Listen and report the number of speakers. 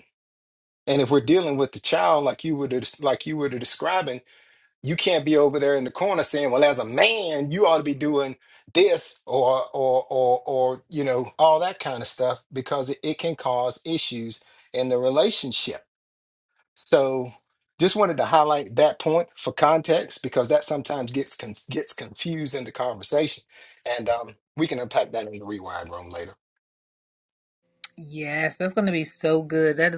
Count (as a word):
two